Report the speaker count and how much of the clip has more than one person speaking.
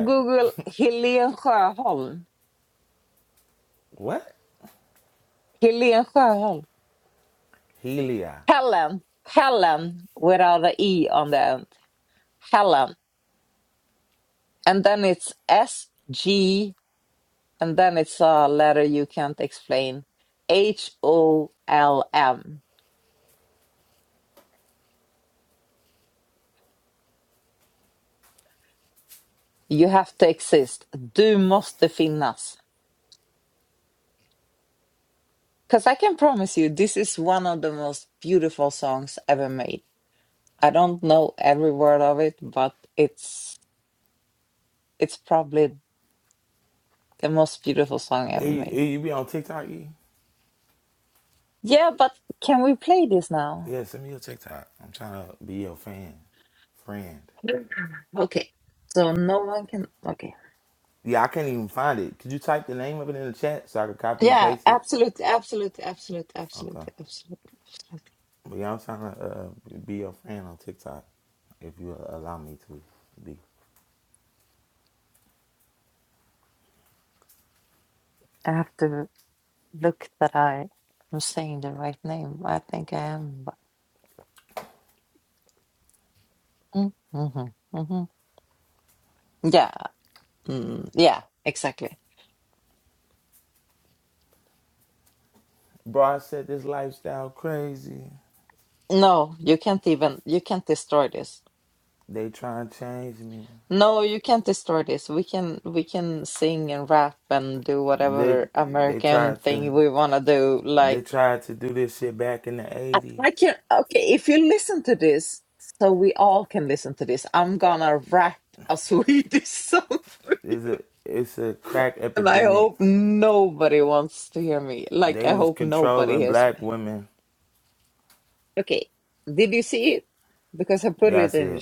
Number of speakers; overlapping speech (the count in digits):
2, about 4%